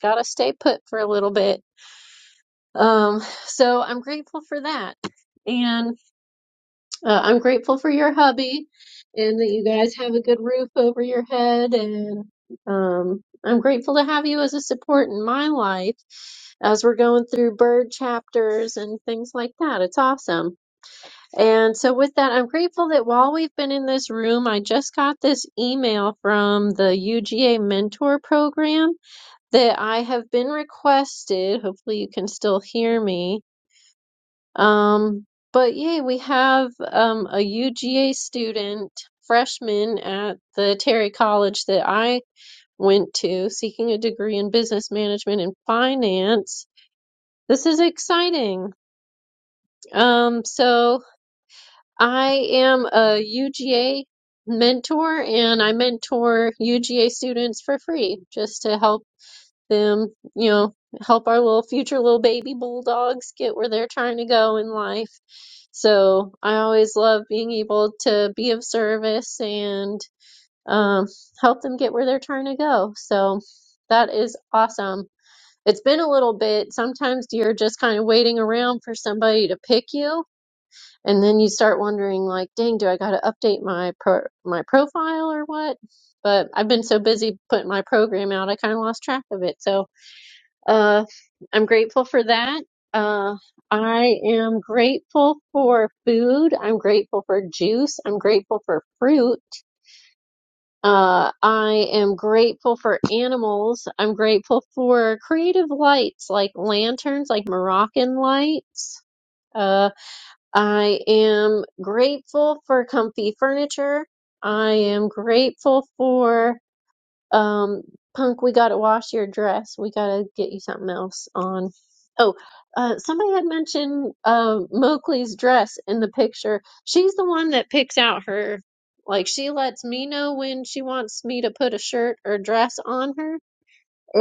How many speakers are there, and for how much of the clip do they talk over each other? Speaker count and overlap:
1, no overlap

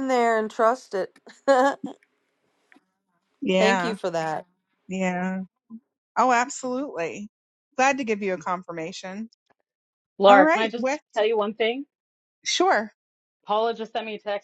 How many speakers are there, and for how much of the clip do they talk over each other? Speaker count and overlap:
3, about 7%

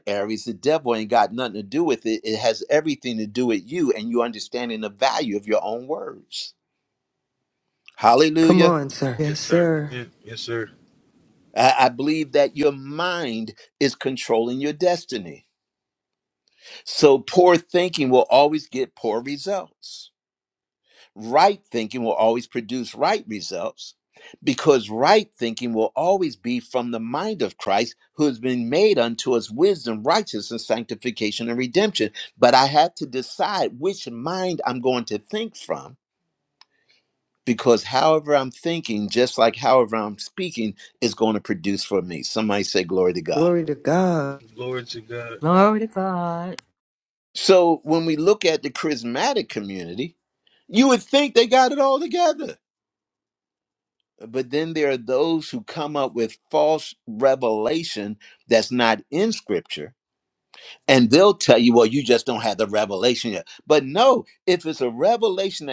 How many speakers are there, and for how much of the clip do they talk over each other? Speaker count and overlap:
4, about 2%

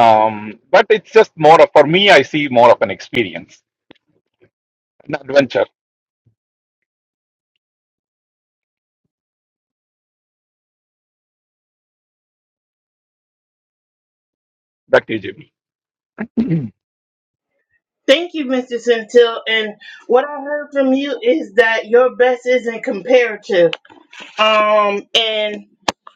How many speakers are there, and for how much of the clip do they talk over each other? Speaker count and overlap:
2, no overlap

